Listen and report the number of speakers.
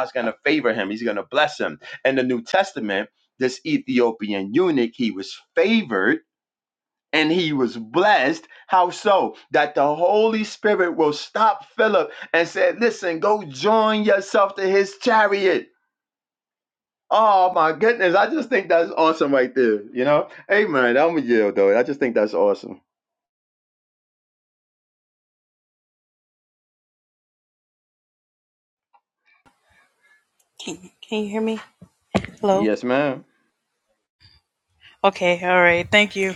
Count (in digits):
2